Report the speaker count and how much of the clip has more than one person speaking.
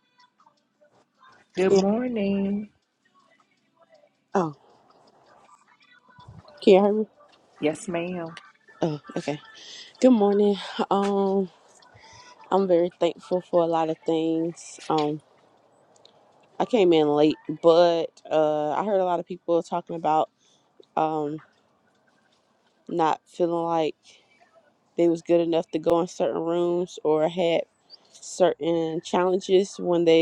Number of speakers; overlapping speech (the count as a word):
two, under 1%